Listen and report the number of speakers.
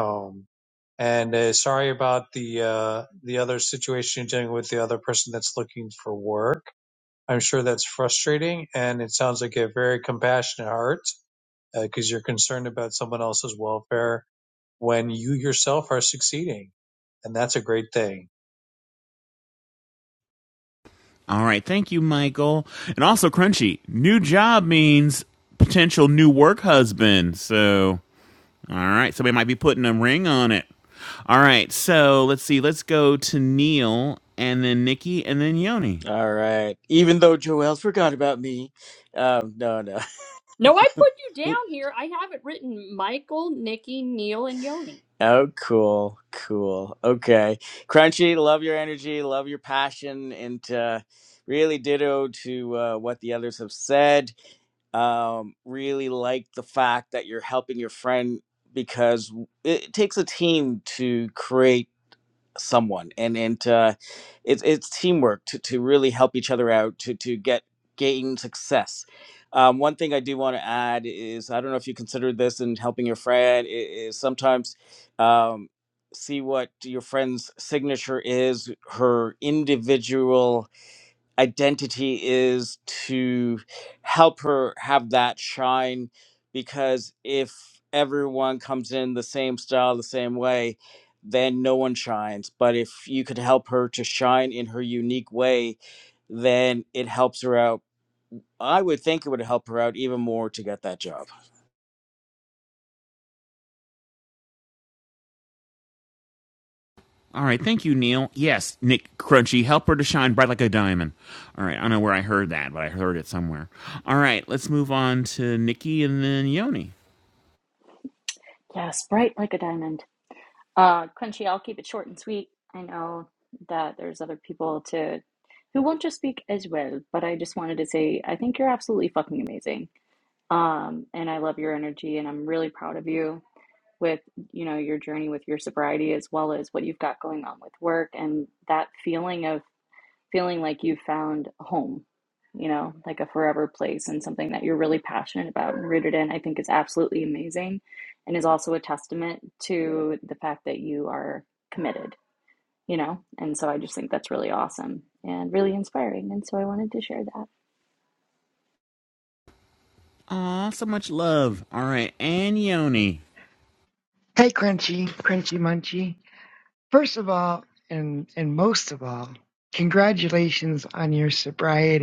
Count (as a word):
six